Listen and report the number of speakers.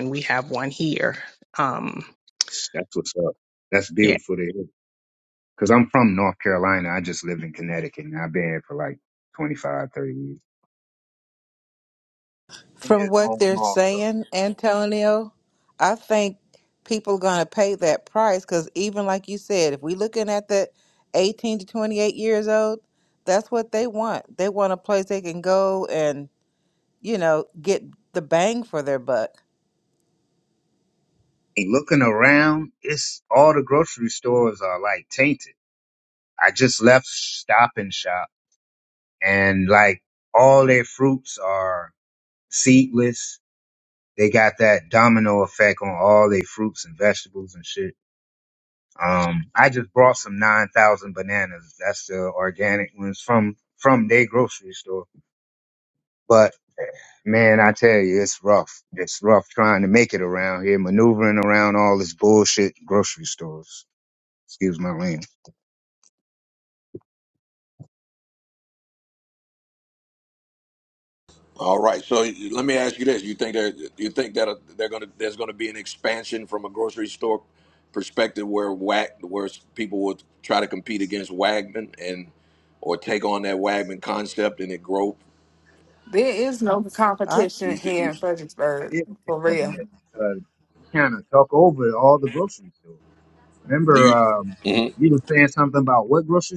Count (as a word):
five